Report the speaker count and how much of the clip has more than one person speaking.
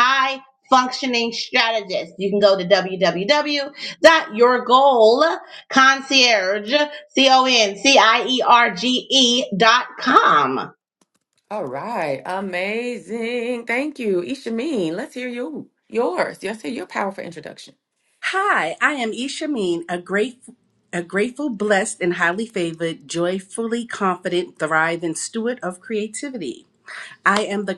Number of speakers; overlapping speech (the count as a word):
three, no overlap